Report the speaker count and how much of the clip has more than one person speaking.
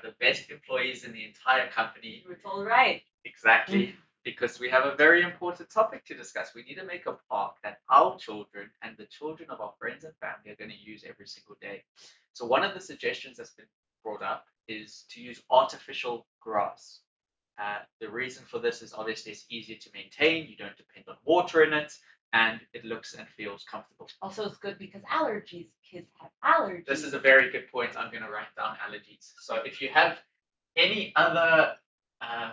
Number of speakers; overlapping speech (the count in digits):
2, about 2%